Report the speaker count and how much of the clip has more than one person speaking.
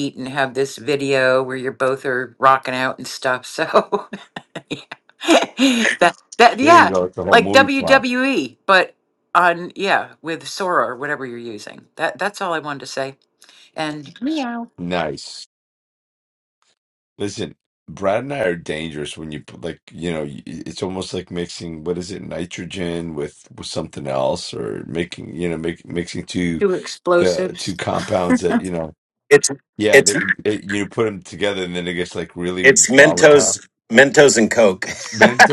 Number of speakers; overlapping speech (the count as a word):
three, about 7%